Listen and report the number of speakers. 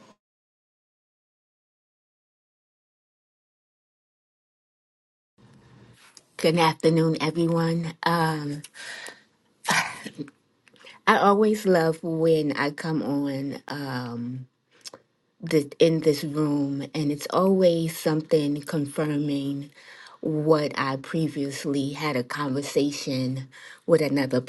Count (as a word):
one